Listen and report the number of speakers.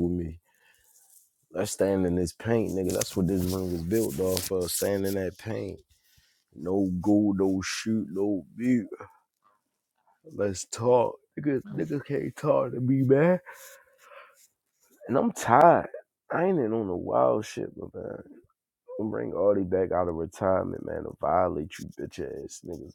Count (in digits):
1